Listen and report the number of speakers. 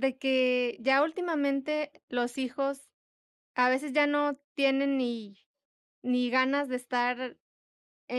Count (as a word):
one